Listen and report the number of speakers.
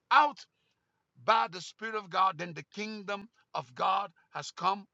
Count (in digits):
1